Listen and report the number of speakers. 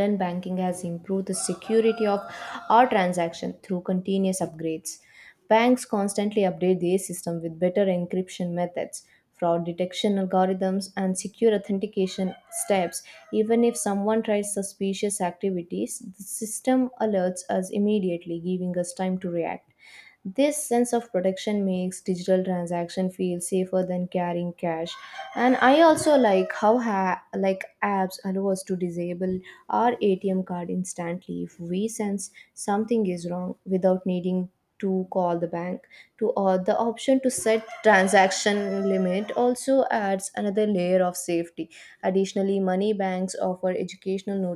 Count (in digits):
1